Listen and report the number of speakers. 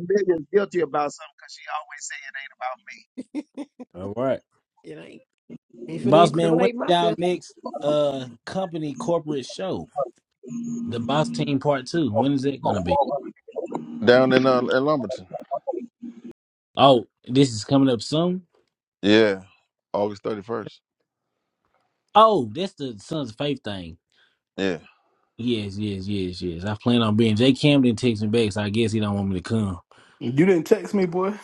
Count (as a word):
five